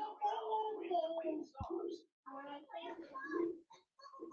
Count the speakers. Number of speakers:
0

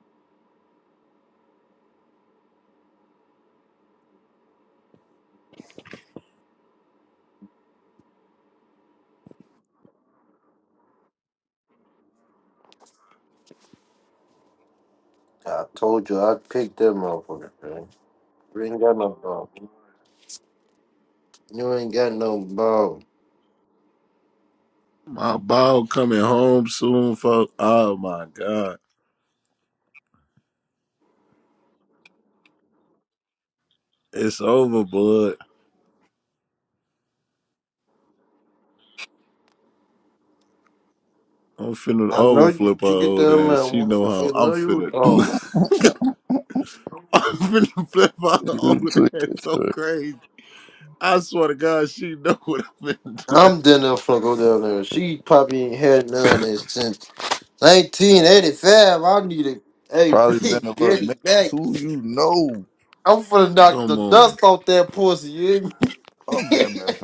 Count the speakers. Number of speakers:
3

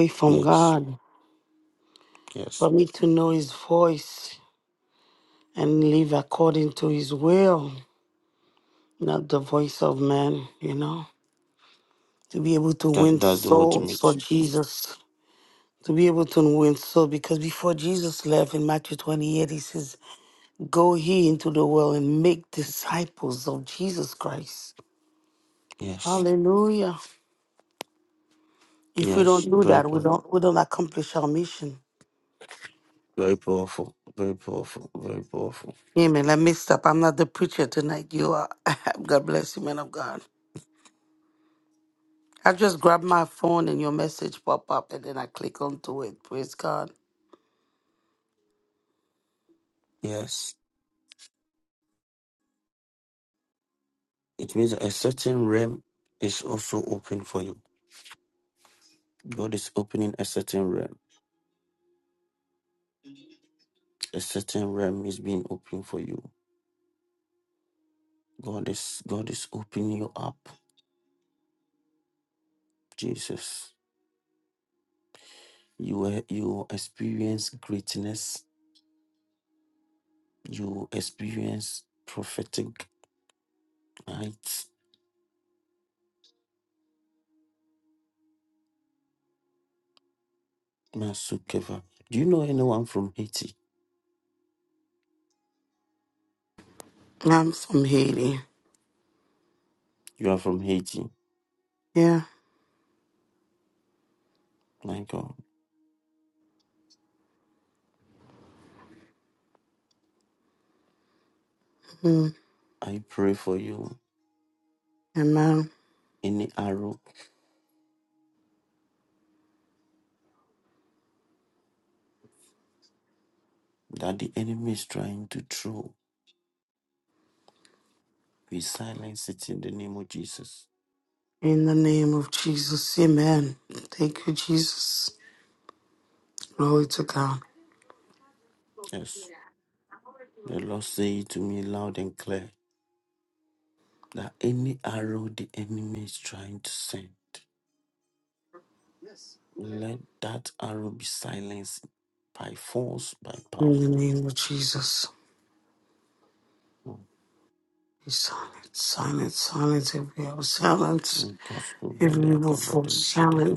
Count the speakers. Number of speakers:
2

